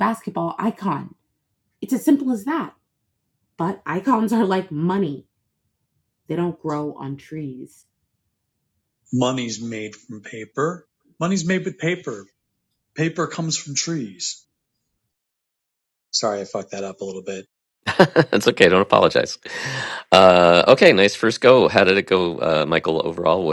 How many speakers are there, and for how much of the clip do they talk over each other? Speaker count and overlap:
3, no overlap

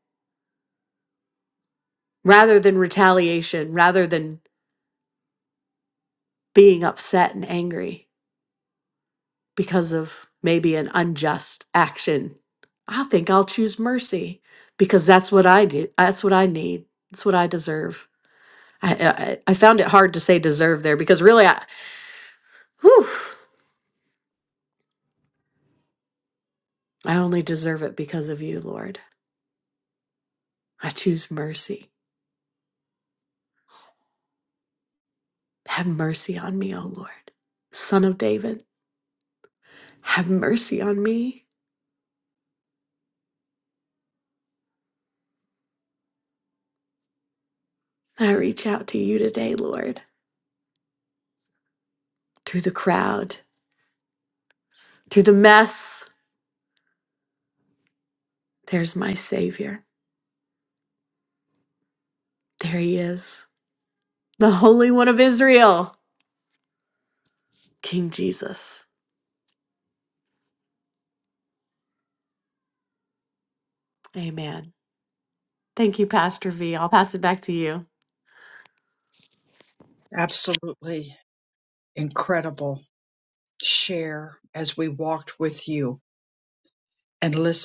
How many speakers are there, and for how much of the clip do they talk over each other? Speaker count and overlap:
2, no overlap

